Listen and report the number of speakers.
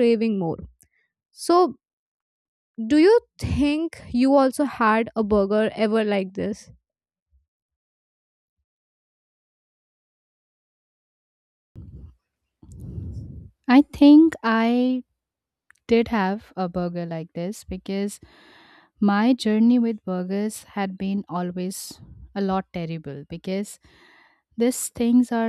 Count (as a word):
two